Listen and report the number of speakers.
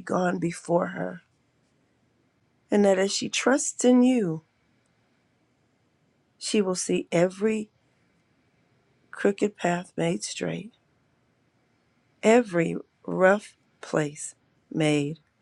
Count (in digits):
1